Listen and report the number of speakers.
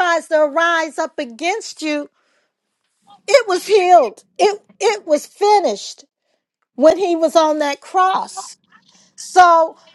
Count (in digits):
1